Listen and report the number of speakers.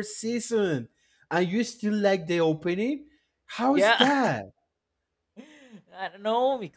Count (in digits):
2